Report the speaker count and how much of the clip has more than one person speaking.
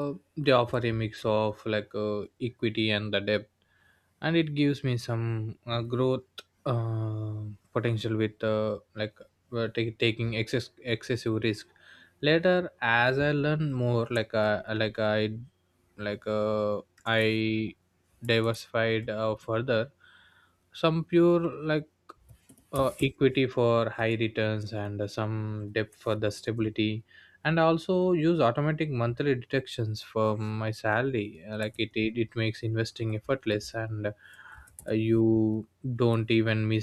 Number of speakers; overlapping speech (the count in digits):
1, no overlap